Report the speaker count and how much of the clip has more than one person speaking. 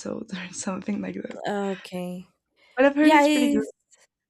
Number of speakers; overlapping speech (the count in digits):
2, about 14%